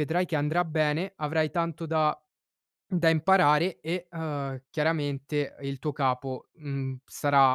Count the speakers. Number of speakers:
one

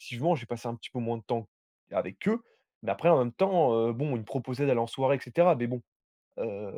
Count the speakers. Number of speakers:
one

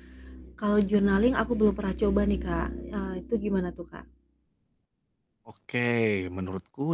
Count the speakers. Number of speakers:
two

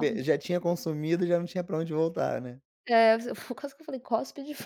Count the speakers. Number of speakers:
two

